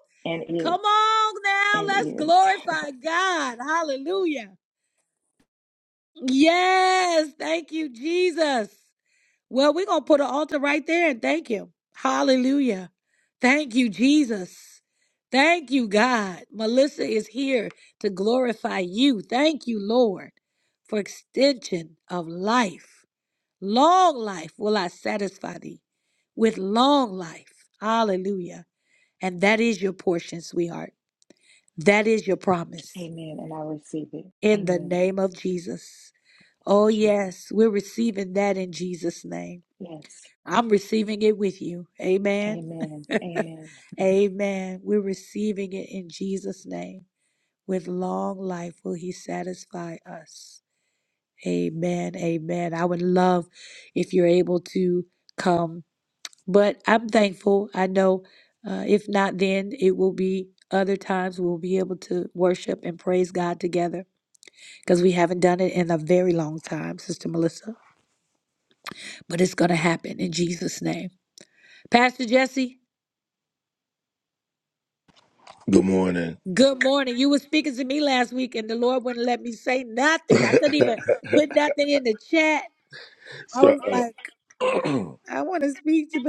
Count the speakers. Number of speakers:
three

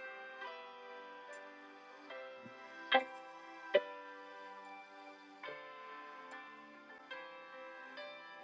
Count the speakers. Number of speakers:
zero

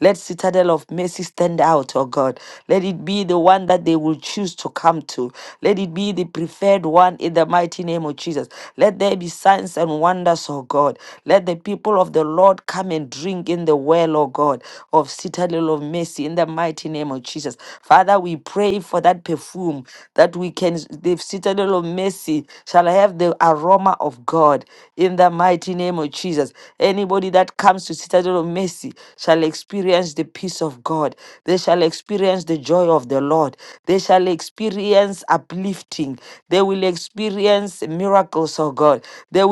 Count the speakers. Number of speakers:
one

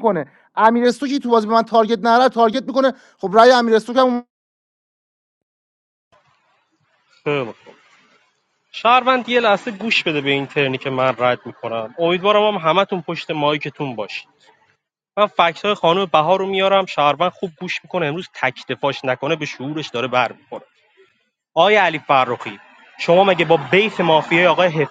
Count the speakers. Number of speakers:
two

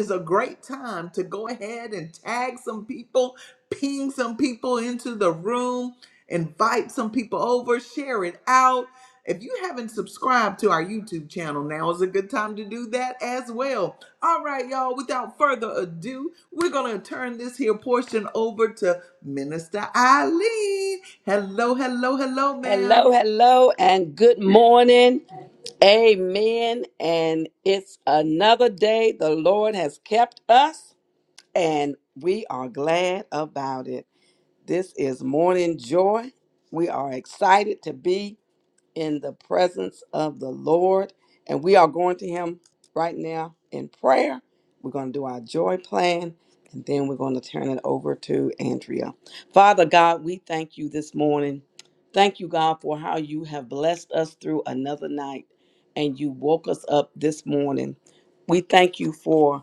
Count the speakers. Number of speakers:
two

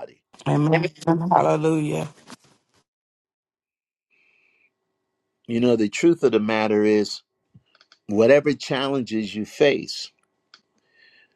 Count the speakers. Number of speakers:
two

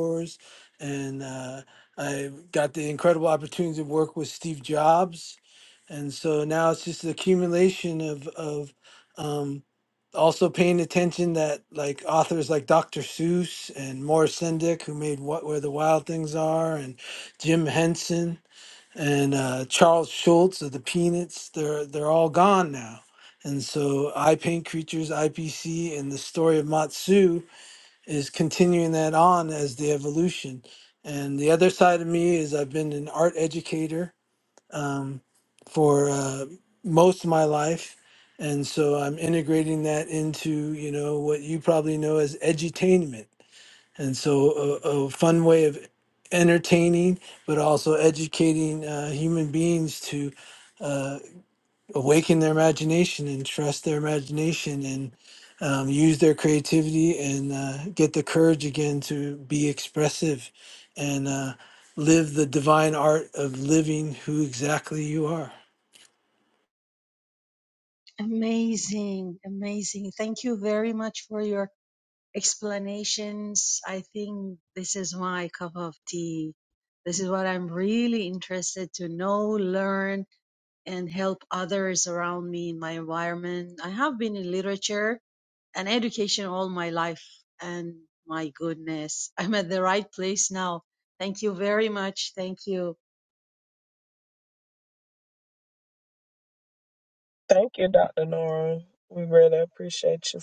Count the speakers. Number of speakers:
three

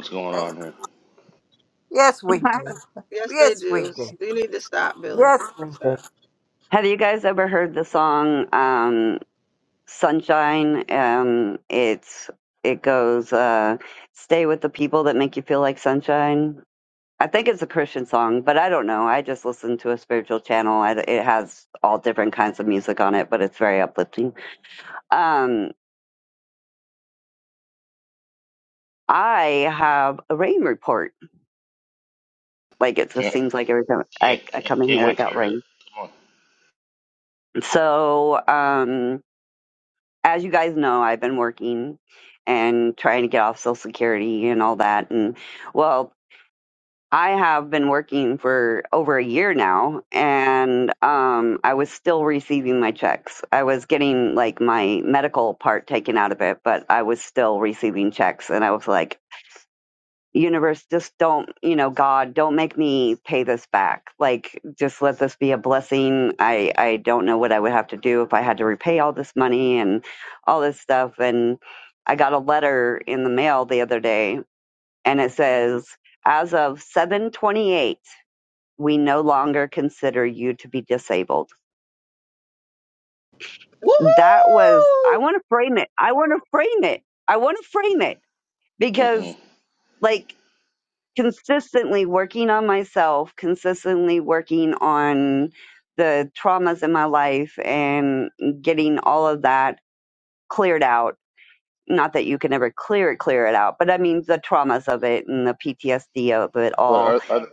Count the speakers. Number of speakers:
four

